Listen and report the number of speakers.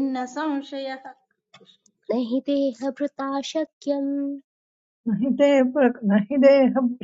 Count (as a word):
three